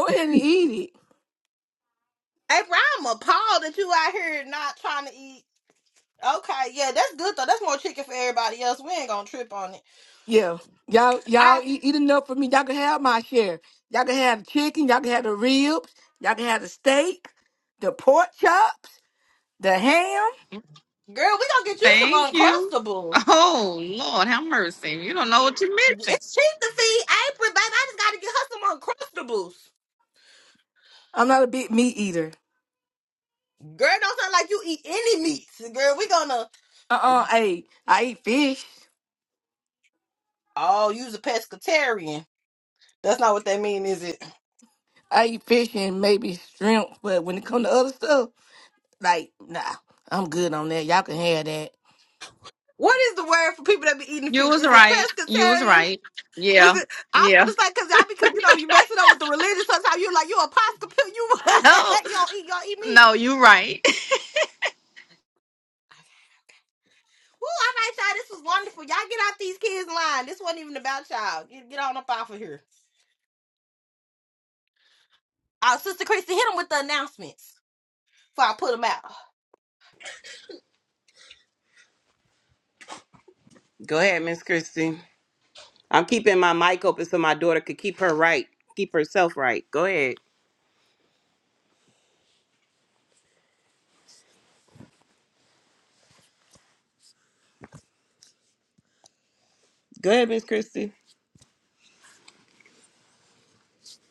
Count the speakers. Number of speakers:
4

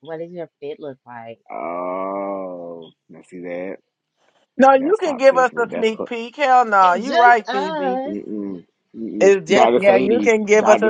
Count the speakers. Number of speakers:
3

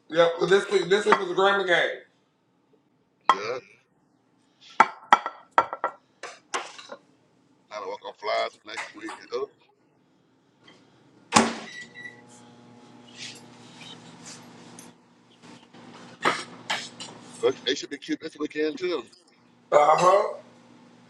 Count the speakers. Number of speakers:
2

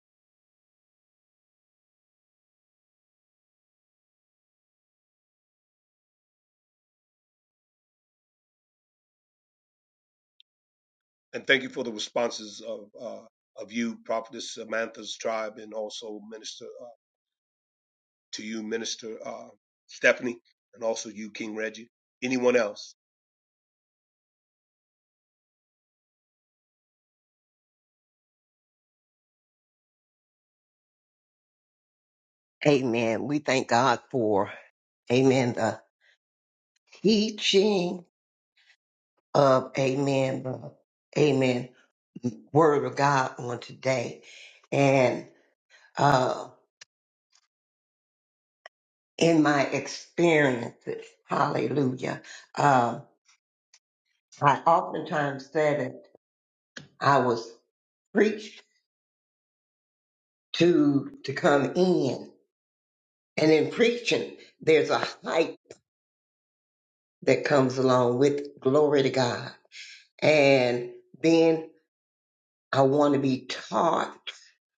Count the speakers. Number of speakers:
2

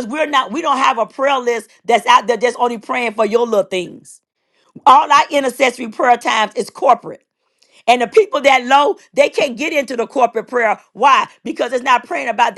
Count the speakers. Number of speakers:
1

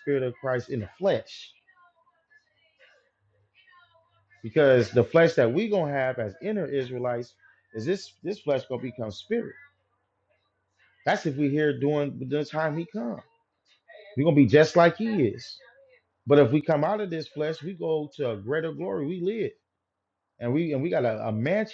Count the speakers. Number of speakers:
1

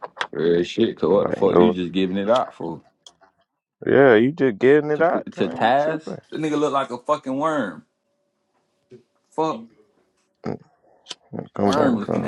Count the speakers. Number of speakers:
2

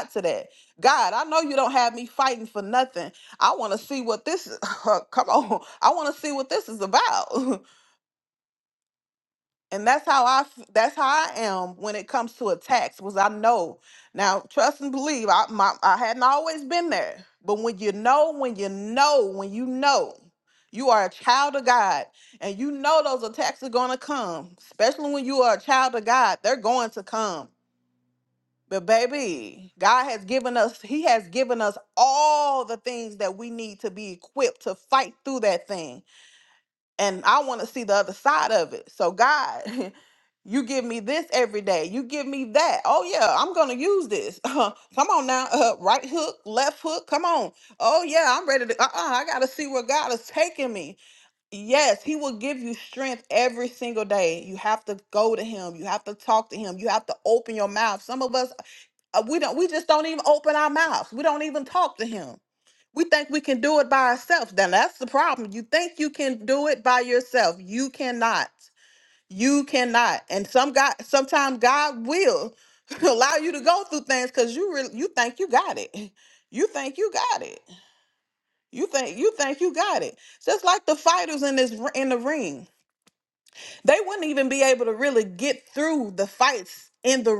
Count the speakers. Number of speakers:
1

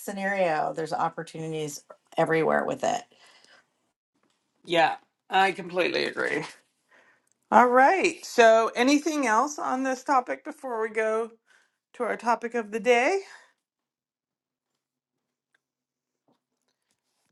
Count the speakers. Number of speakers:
2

